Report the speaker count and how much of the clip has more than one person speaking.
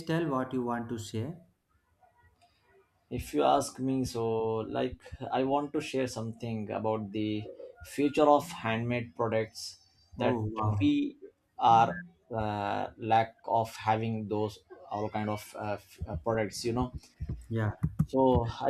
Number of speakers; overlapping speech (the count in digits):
2, about 1%